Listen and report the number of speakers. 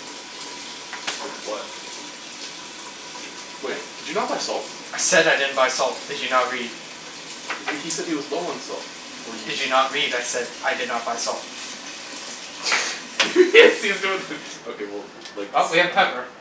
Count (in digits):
2